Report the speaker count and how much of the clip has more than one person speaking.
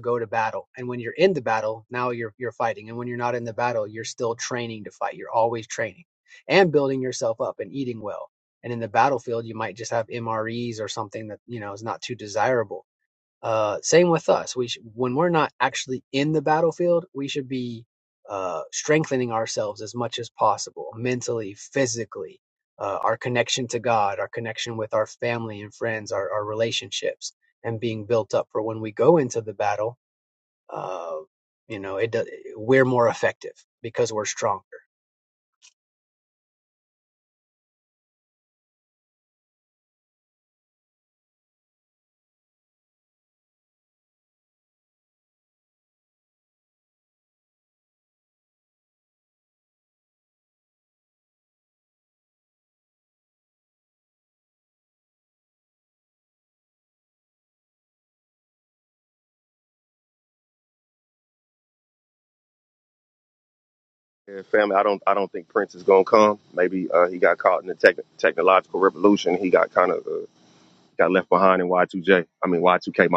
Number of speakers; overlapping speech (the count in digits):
2, no overlap